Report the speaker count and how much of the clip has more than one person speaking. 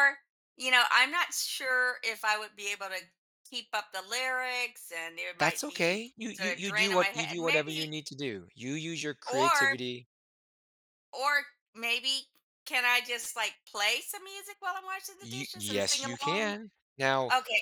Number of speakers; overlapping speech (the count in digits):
2, about 22%